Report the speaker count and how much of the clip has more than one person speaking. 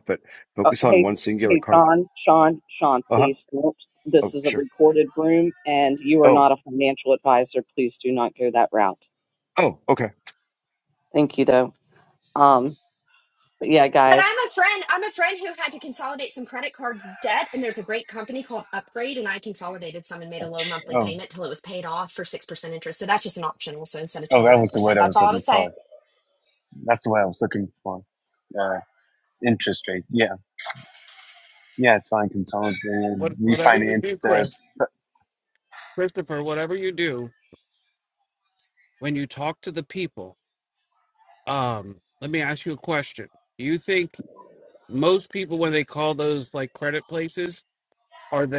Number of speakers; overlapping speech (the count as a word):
five, about 9%